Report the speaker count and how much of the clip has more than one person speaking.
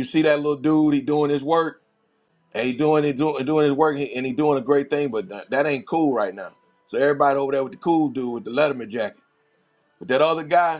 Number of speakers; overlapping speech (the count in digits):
1, no overlap